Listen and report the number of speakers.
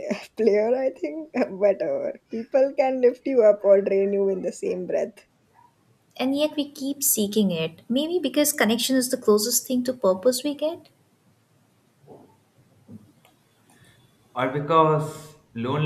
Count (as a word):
three